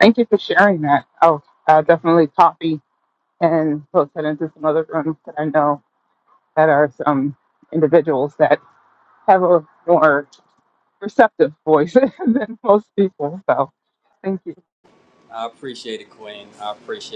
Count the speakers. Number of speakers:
two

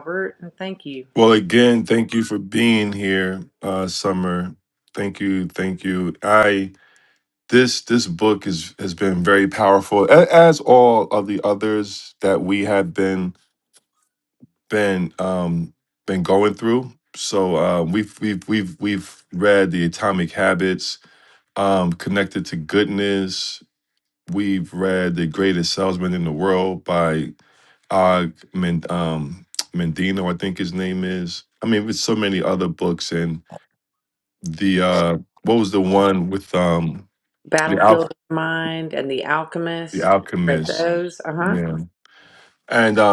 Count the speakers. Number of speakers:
two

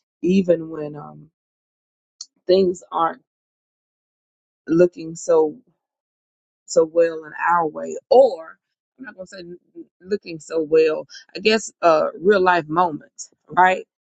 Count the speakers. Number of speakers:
one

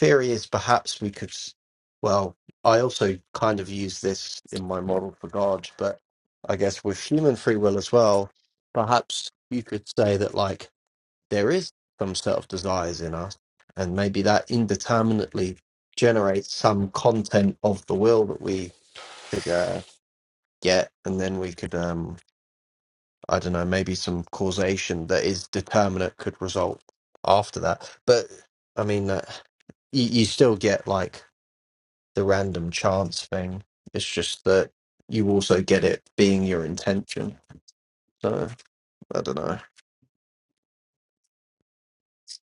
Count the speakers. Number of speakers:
one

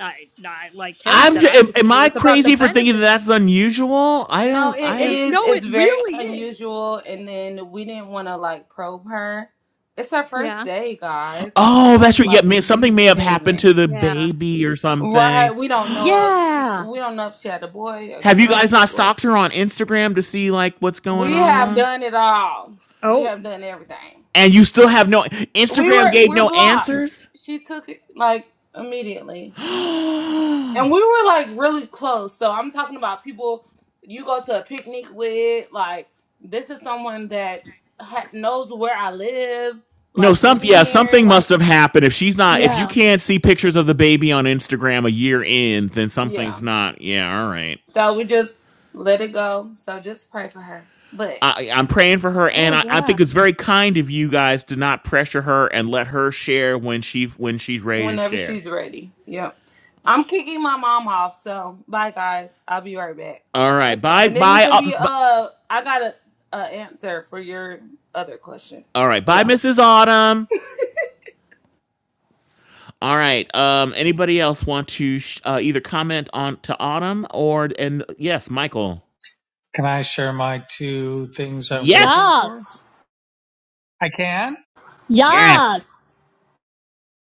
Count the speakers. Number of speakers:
four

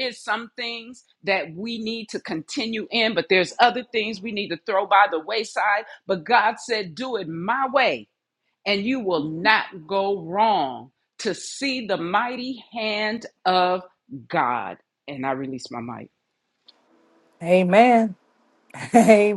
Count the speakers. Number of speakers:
two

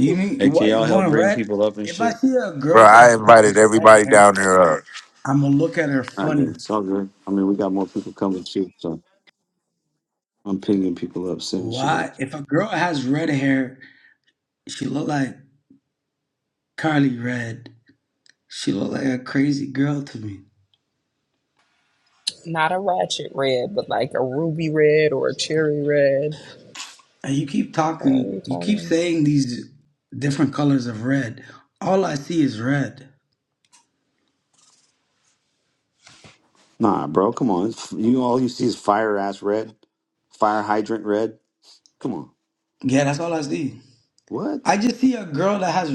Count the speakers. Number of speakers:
four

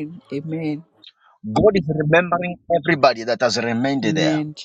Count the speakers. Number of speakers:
two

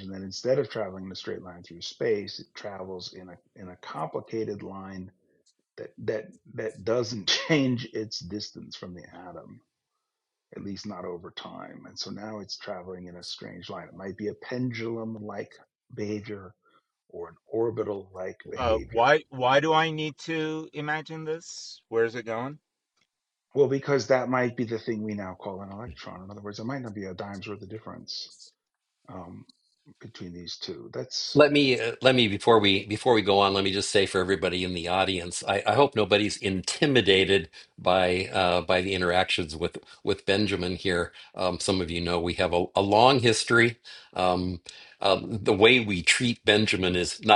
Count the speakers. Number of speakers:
three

